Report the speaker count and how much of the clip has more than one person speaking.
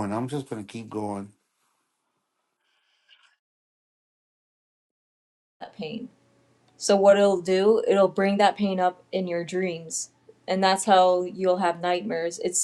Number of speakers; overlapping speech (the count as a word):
two, no overlap